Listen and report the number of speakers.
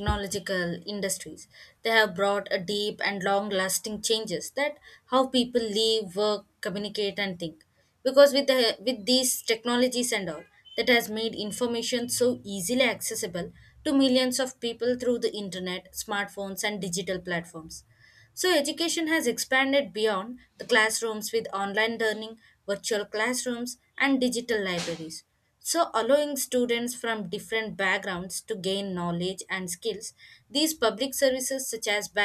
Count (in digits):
1